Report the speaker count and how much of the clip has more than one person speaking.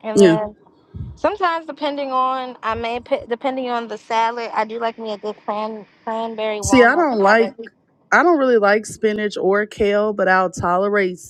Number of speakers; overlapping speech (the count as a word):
two, about 10%